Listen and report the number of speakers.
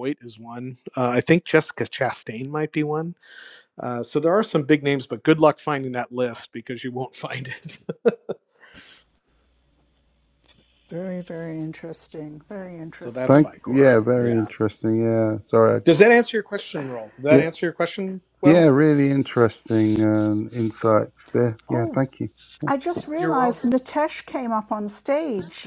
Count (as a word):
three